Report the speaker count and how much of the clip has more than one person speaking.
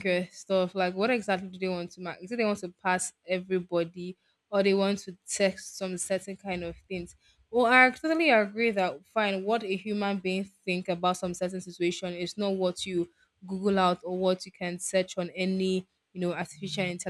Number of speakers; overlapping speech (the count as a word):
one, no overlap